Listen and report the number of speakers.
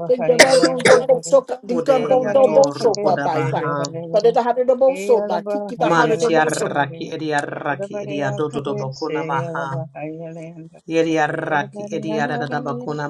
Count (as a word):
three